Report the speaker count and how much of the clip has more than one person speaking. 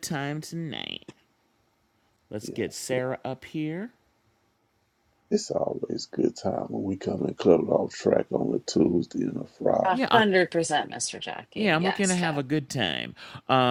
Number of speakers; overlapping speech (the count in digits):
3, about 13%